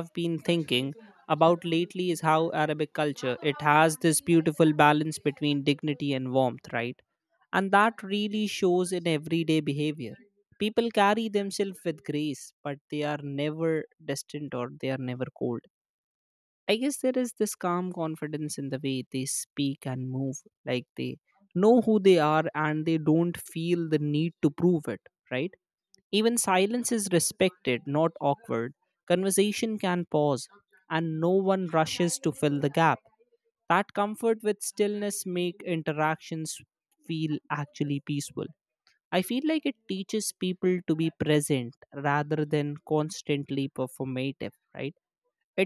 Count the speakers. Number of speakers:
one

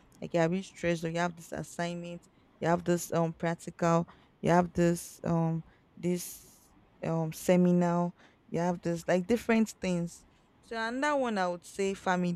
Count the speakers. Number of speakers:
one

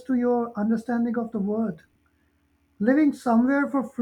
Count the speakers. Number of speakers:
one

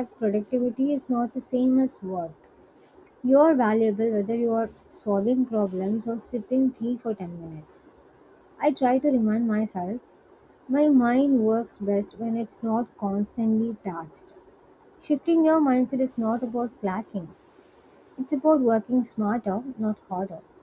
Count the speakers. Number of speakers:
one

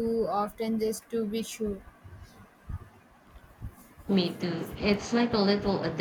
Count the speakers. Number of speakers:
two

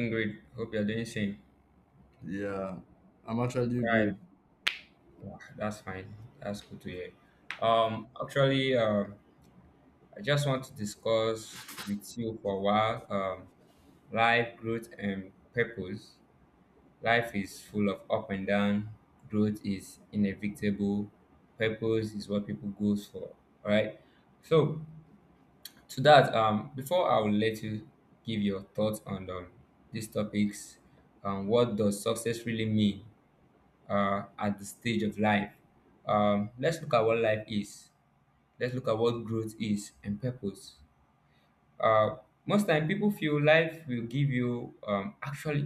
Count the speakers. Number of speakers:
two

